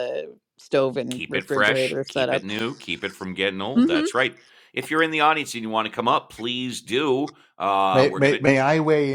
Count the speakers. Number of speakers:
3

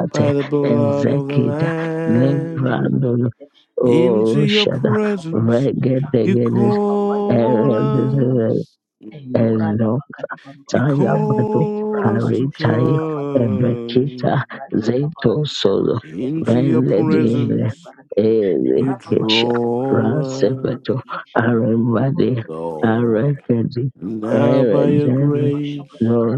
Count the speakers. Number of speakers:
3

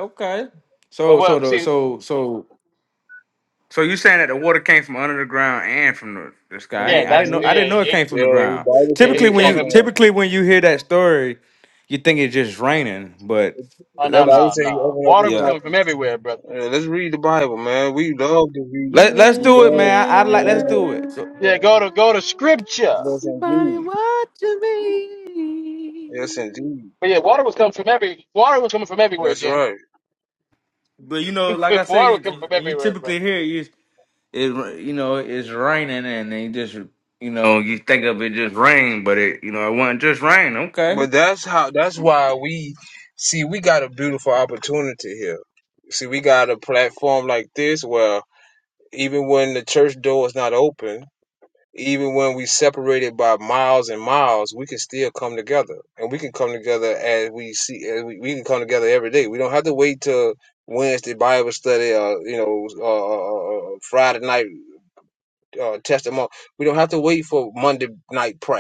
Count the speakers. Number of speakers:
4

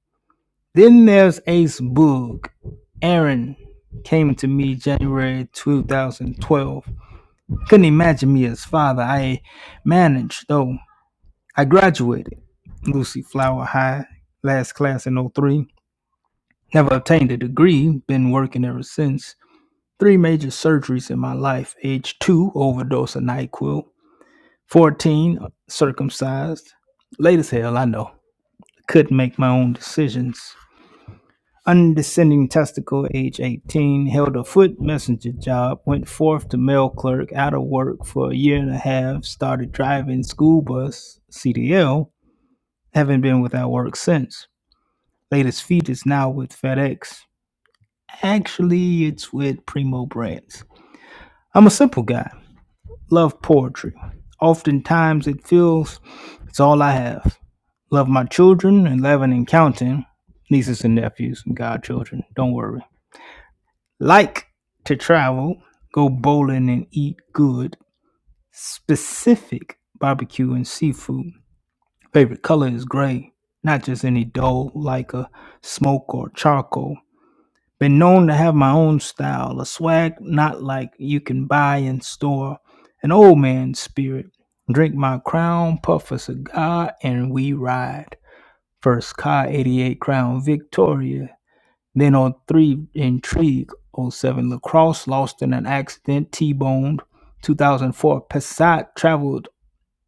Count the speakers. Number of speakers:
1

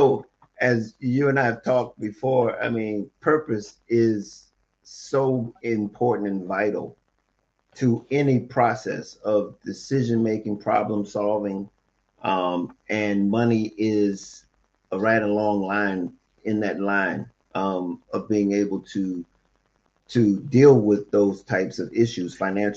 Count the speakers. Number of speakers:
1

